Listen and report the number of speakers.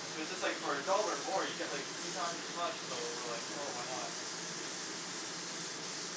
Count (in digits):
1